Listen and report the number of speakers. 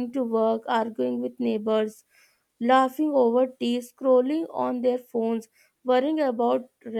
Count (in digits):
1